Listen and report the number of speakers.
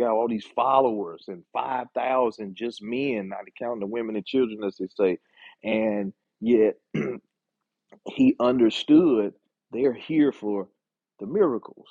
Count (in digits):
1